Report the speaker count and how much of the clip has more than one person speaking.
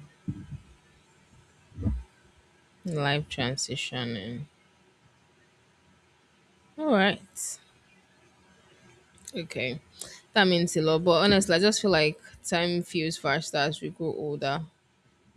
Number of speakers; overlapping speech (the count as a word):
one, no overlap